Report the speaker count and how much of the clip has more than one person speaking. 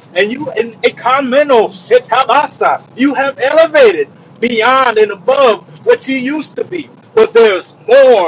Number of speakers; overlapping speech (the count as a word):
one, no overlap